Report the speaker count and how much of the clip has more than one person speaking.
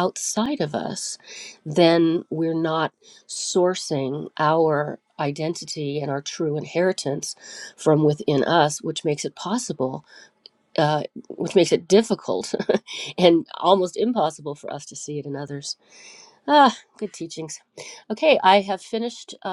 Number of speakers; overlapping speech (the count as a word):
one, no overlap